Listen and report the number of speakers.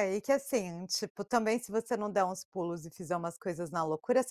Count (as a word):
one